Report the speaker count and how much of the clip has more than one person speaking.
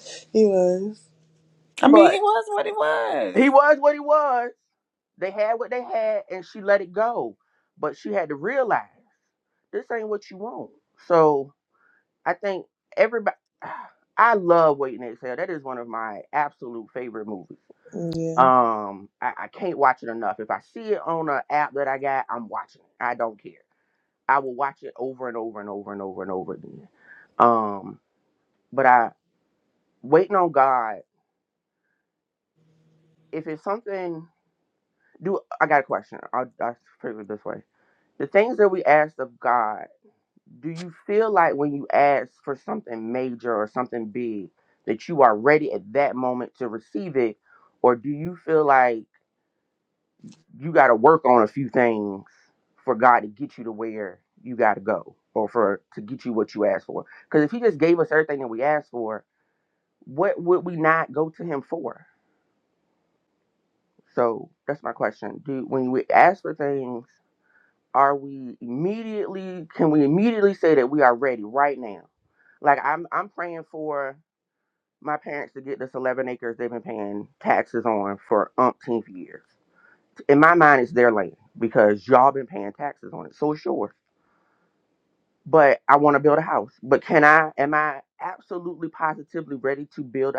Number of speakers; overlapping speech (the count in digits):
3, about 1%